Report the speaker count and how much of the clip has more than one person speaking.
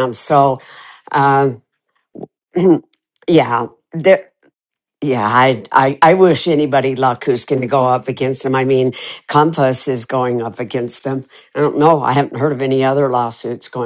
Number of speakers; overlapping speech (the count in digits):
1, no overlap